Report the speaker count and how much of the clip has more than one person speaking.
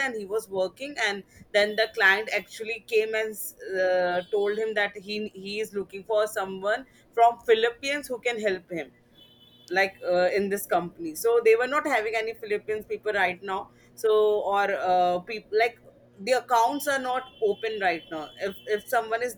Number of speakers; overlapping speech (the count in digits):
1, no overlap